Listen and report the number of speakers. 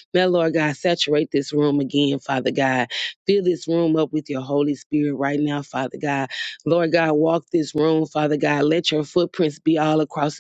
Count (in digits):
1